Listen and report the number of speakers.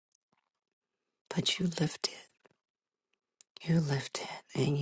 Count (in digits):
1